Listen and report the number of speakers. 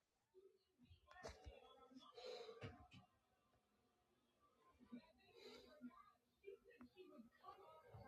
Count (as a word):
zero